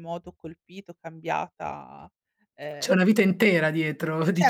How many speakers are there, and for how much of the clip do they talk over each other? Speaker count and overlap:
two, about 6%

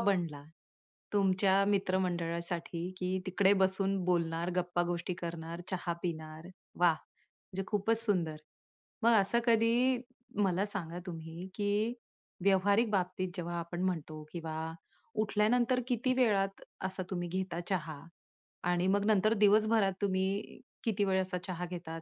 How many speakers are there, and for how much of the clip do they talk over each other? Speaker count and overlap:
one, no overlap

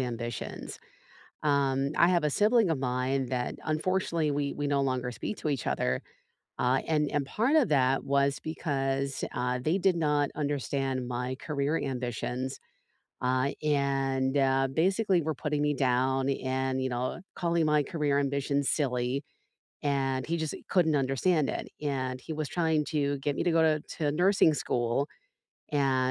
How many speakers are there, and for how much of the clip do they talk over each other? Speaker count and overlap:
one, no overlap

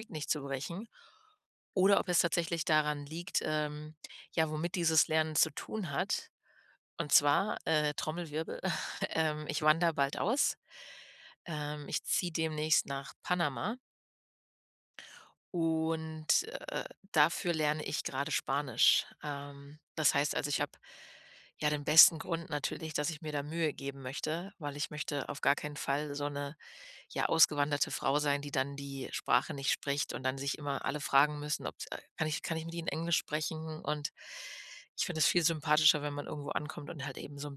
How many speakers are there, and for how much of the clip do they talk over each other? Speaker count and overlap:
one, no overlap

